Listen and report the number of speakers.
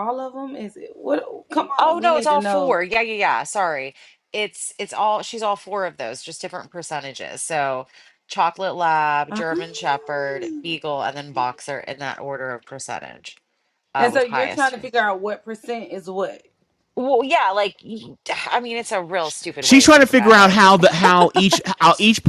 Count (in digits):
3